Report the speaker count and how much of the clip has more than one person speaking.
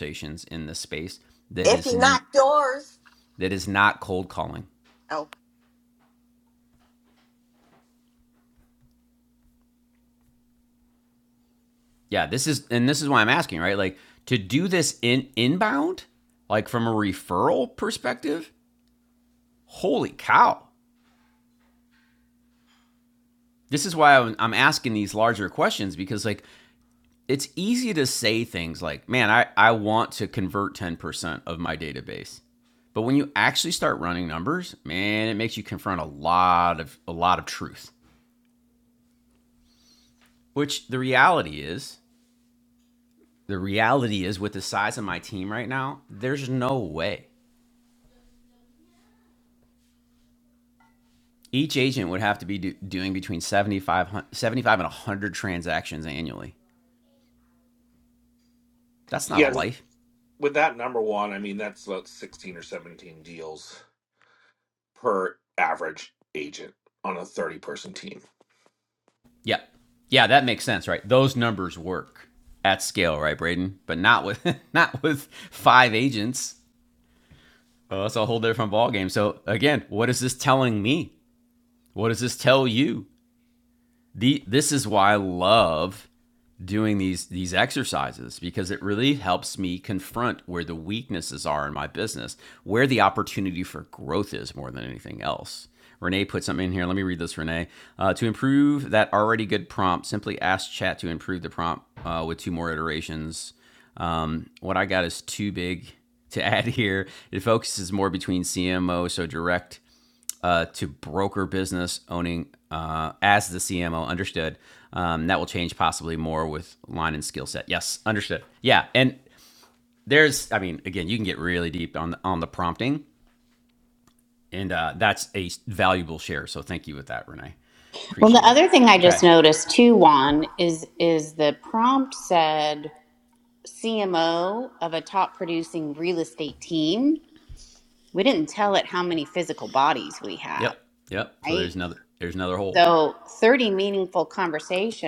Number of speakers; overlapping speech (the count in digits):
4, about 2%